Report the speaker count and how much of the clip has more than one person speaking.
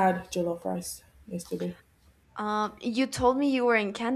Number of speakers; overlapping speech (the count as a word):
two, no overlap